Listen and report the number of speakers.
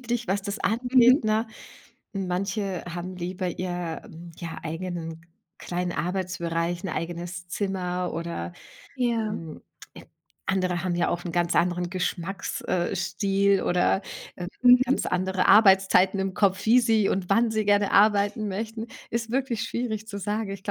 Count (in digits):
2